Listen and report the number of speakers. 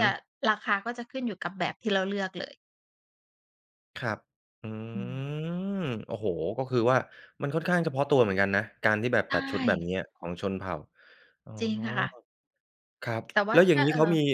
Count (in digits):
2